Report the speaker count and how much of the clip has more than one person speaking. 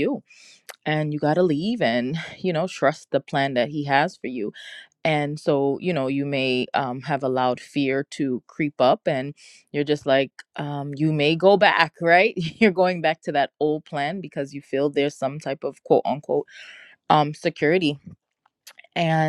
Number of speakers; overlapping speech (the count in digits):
1, no overlap